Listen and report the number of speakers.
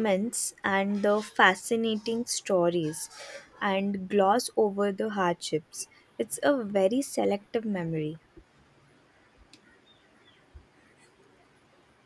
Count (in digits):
1